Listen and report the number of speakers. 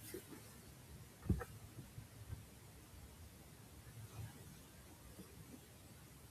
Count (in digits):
0